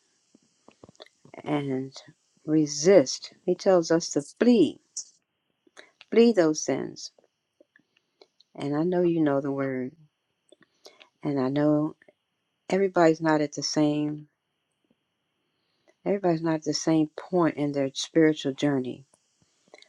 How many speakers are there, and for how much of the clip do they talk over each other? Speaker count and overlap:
1, no overlap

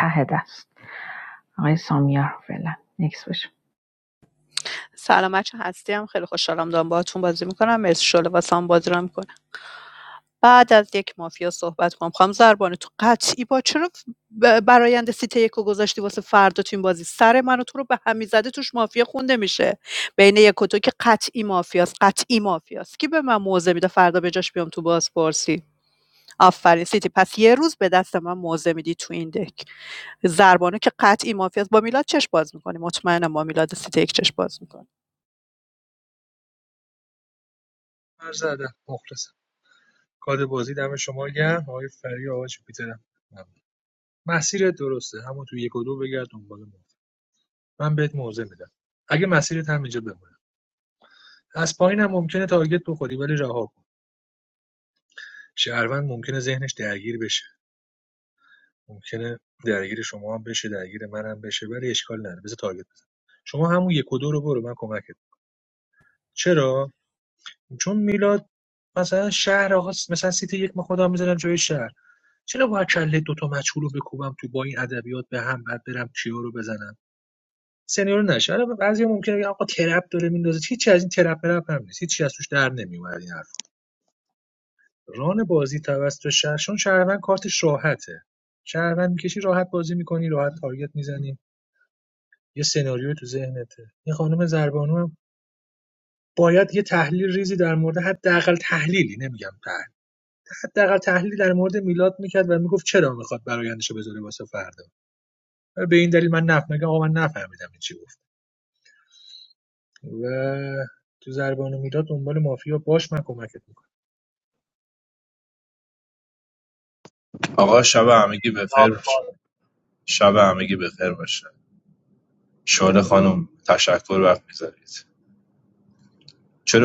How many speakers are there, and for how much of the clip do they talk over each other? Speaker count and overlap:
4, no overlap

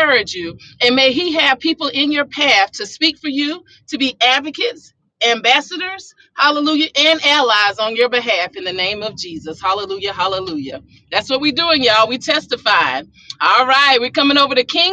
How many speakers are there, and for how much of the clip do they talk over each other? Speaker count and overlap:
1, no overlap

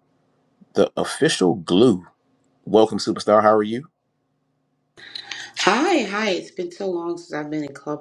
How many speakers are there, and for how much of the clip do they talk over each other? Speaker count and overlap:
2, no overlap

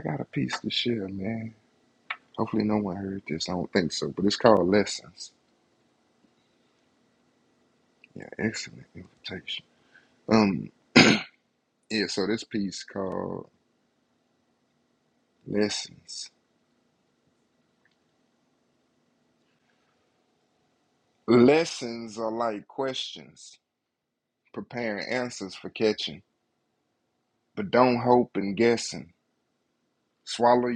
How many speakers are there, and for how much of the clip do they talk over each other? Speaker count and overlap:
1, no overlap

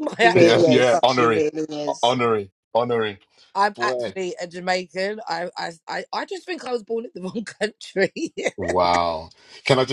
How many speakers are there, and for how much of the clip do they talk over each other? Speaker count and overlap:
3, about 18%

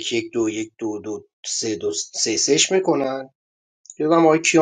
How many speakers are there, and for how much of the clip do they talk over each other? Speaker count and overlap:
1, no overlap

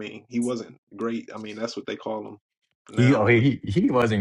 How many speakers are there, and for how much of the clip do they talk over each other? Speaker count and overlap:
2, about 11%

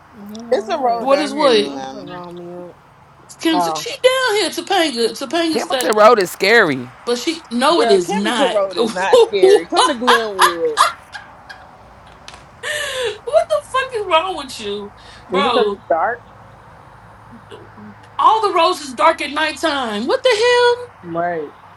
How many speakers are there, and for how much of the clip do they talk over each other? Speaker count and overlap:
5, about 19%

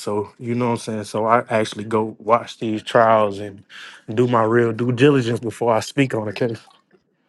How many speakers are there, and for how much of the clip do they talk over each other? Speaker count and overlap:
1, no overlap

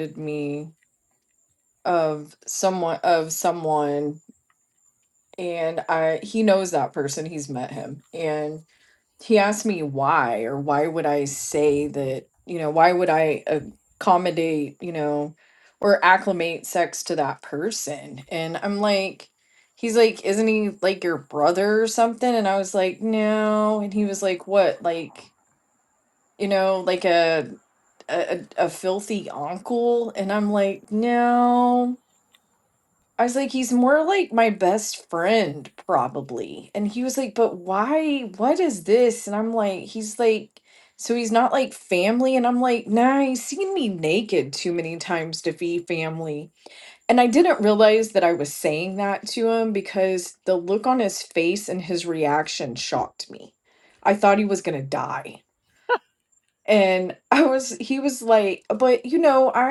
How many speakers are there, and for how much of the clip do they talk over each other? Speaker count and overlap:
1, no overlap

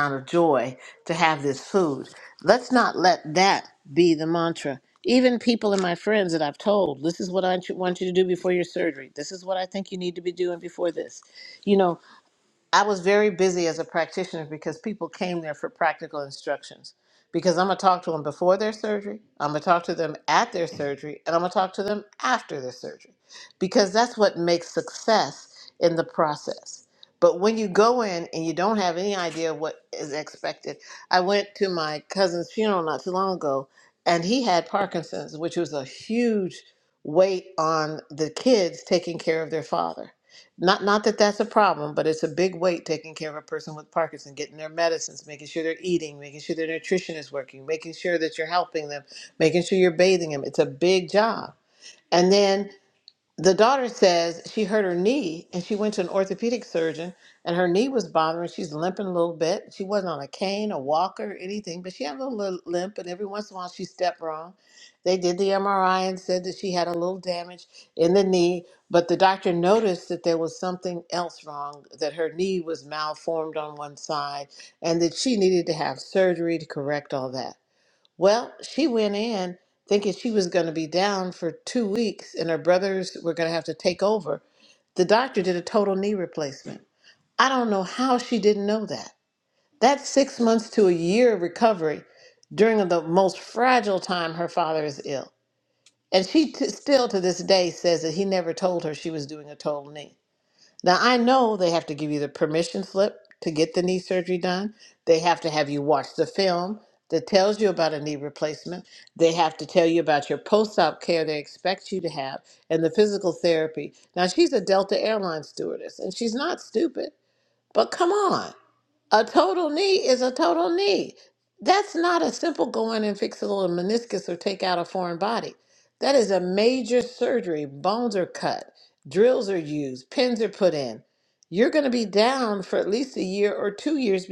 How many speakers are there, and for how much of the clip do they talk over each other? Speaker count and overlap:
1, no overlap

